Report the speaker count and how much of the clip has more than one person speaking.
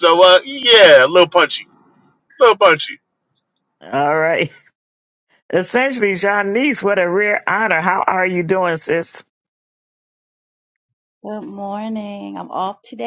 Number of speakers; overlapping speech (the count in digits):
3, no overlap